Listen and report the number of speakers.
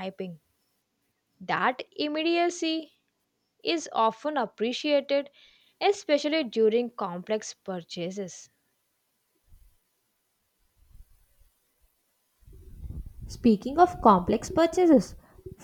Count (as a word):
two